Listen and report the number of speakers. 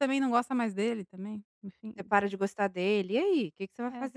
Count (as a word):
two